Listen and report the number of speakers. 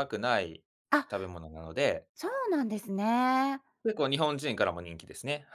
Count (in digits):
2